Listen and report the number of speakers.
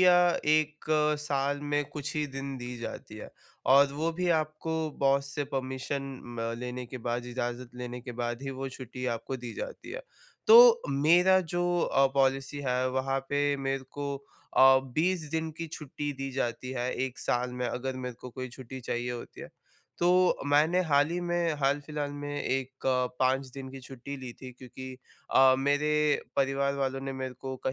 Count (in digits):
1